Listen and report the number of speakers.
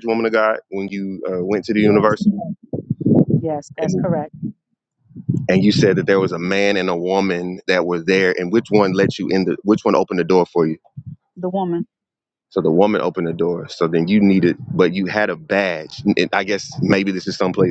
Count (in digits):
2